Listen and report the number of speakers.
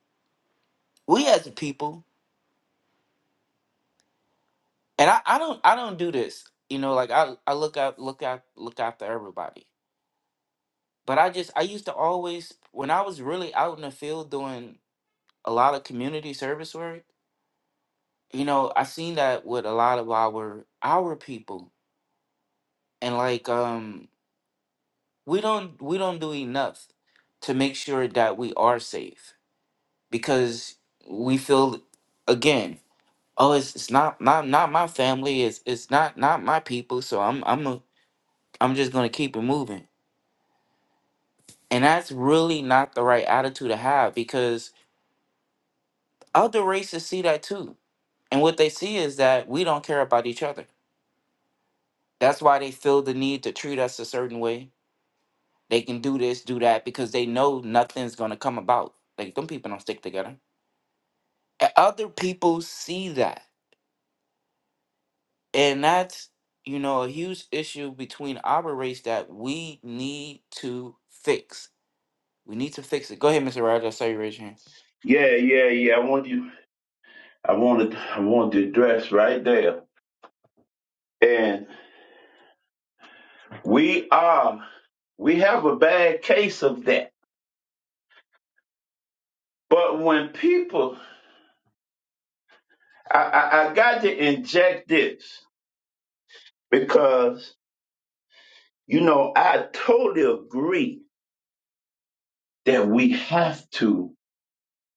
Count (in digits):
2